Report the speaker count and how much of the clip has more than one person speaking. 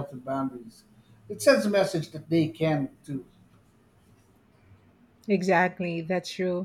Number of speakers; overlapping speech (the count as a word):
two, no overlap